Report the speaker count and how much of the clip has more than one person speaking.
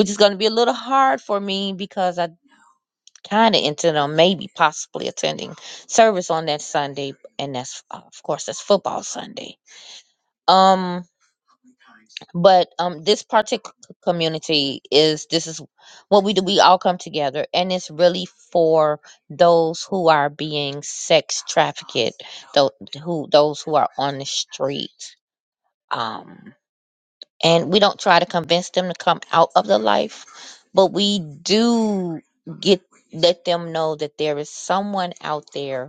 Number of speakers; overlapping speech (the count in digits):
1, no overlap